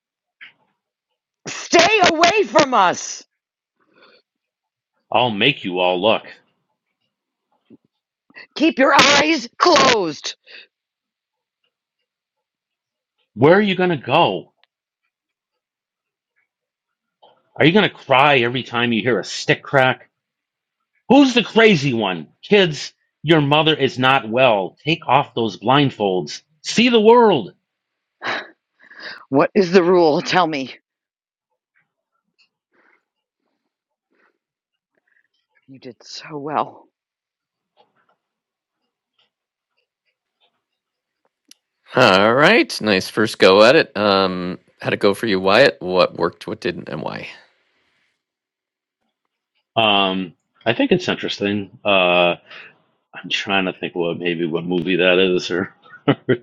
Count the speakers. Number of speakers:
3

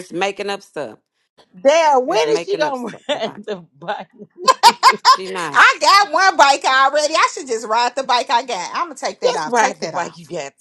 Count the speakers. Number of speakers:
3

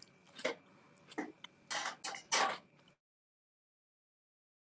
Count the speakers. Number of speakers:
0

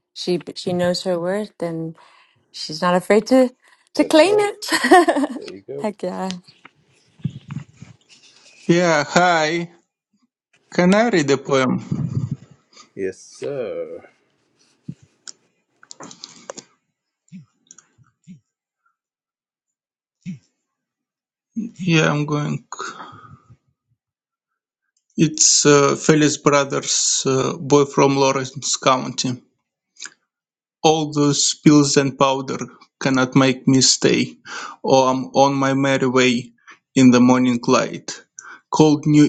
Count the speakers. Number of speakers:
3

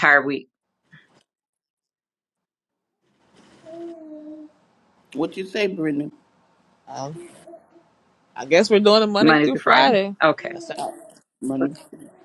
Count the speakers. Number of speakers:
3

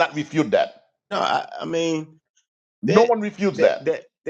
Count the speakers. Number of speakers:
2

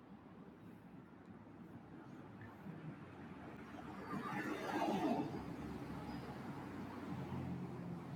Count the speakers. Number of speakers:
0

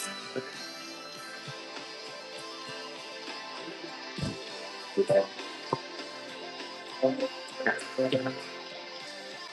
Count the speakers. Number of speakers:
0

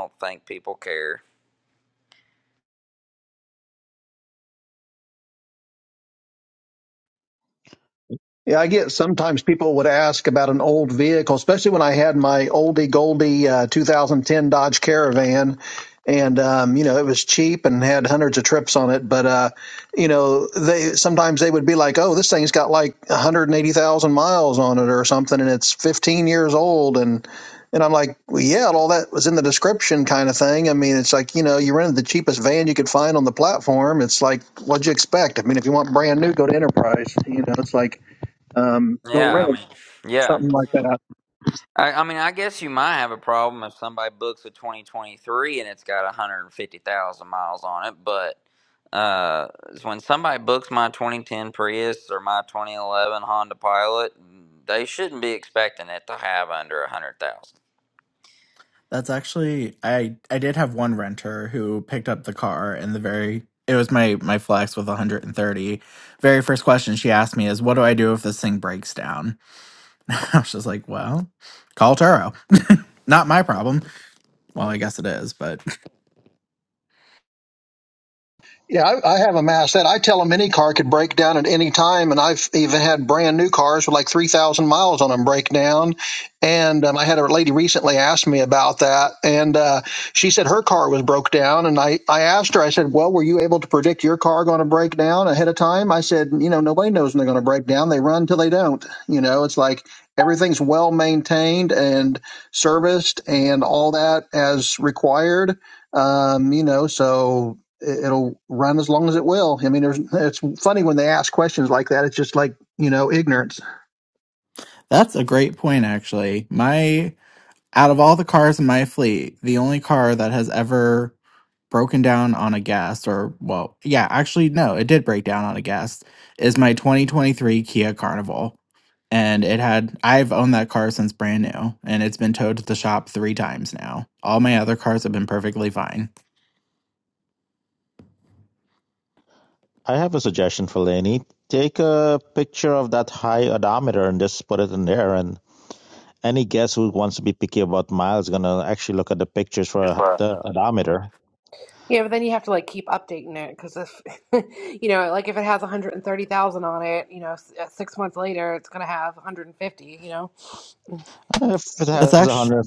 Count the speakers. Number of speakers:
5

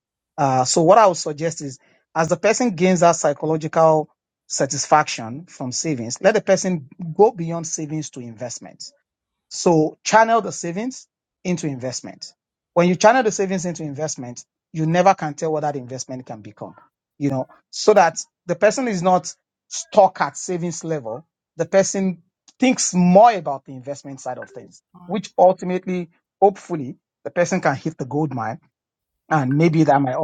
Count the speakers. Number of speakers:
1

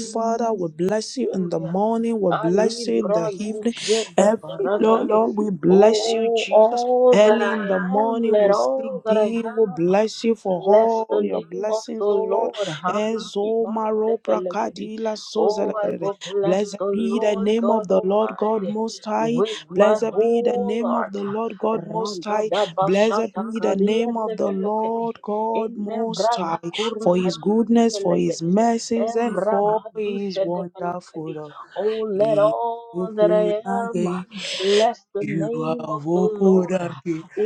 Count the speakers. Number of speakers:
2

